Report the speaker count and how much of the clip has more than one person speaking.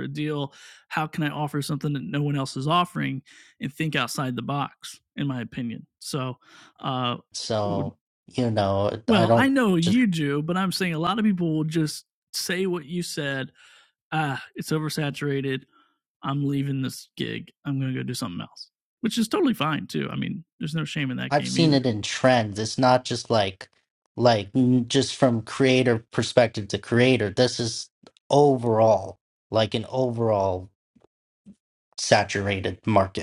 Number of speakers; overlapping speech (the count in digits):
2, about 4%